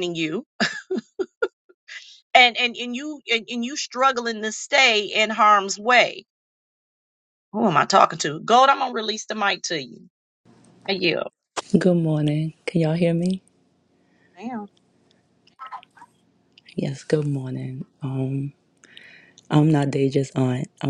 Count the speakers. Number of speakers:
2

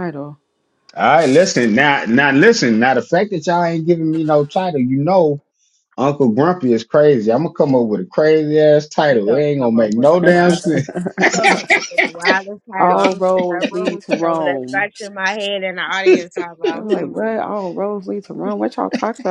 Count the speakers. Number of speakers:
3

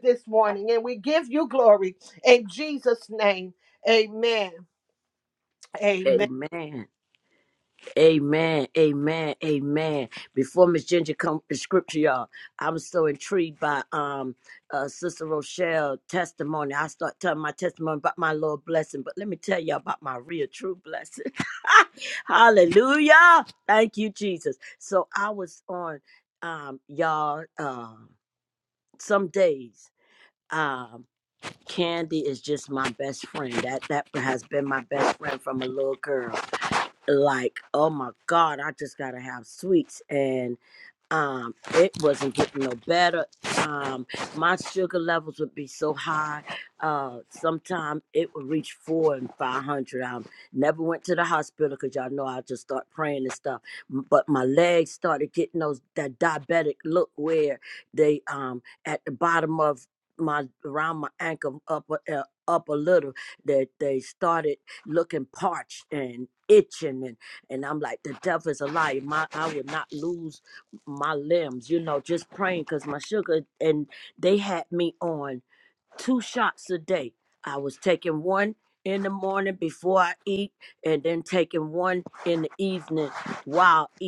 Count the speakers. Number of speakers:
2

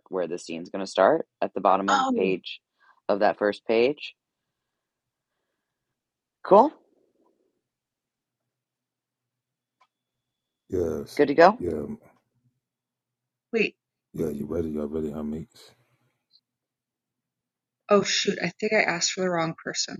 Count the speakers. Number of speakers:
3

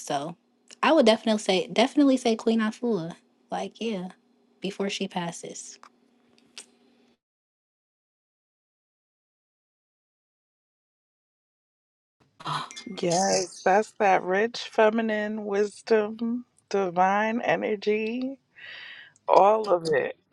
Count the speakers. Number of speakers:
2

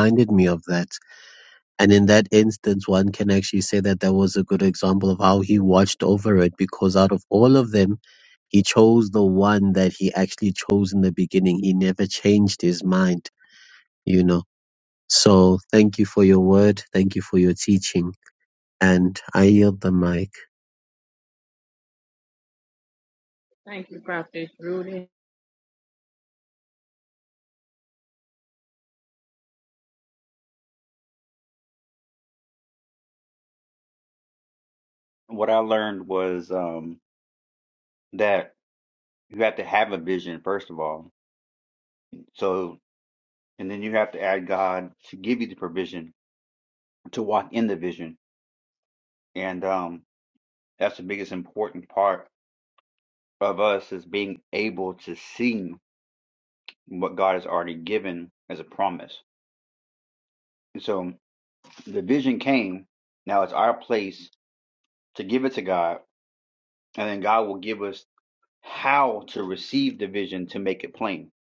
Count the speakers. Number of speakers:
3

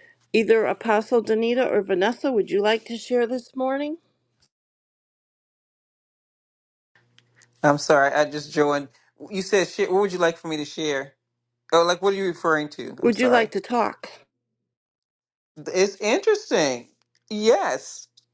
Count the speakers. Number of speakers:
2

